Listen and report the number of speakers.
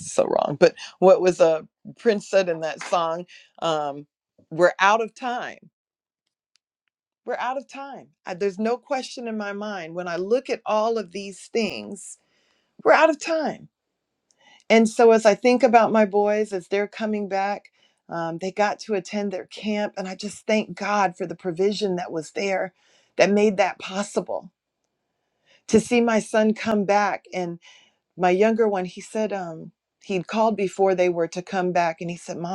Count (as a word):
one